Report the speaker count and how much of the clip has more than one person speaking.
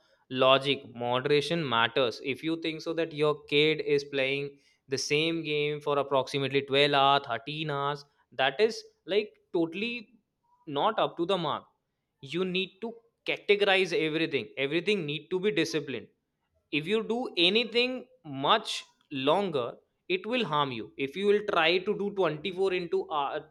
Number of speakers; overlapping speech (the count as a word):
one, no overlap